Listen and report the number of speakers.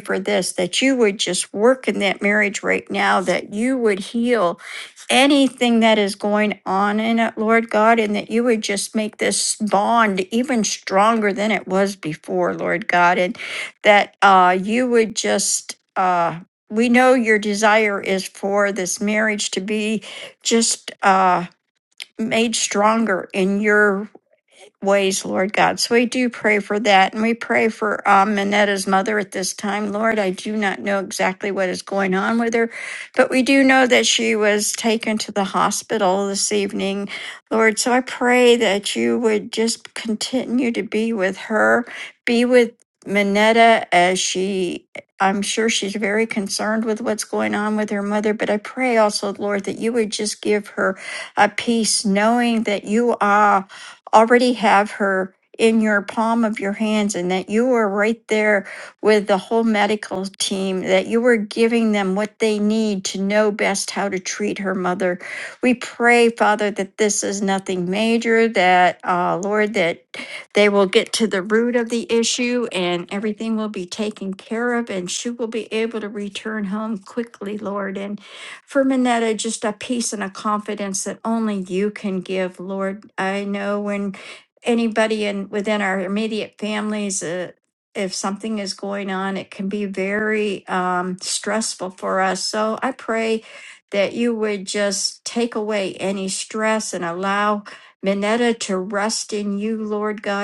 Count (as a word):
one